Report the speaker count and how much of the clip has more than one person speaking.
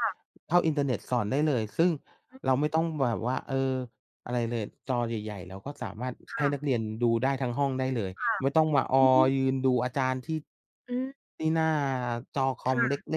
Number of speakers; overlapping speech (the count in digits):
2, about 8%